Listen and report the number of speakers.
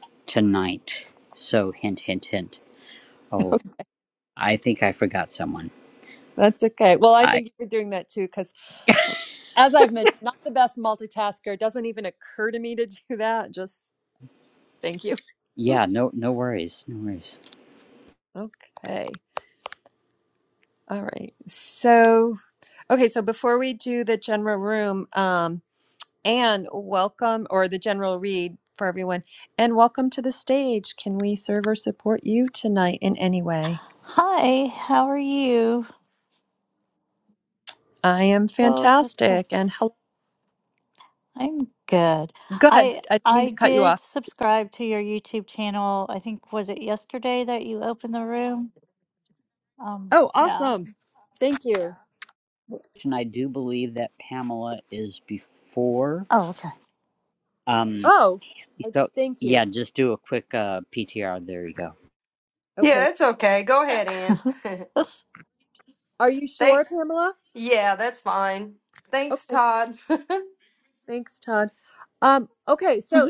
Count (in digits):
4